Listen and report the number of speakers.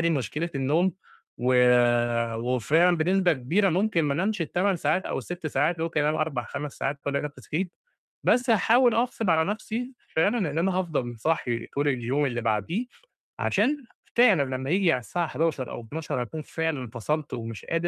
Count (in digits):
1